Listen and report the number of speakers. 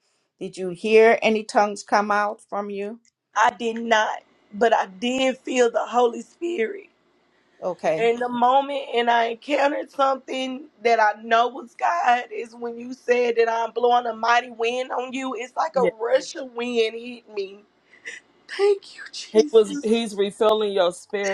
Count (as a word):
three